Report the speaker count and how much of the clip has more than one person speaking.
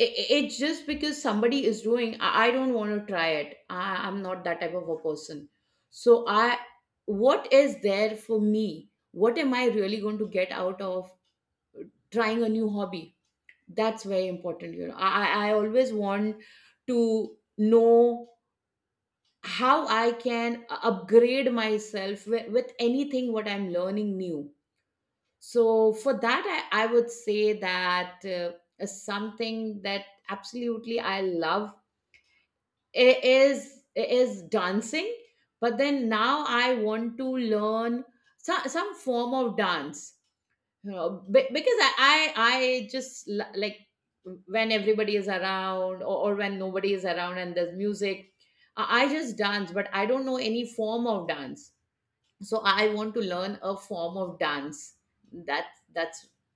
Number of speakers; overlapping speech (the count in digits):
1, no overlap